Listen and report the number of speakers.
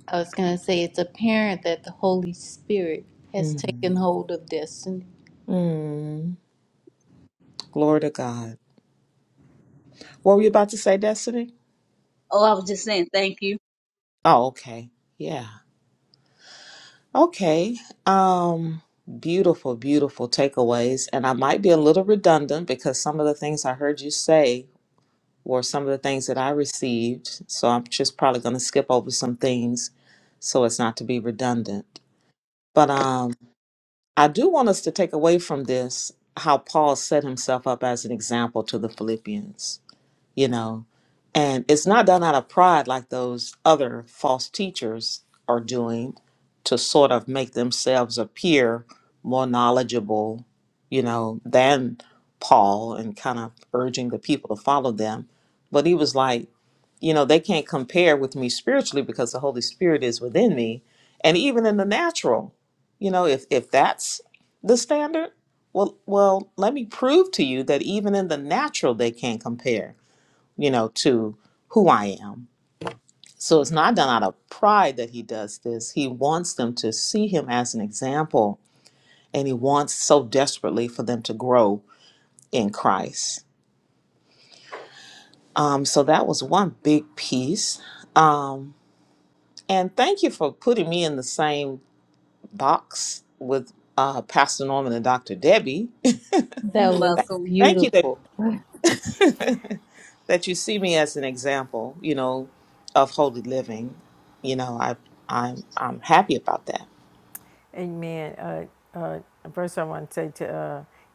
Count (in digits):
4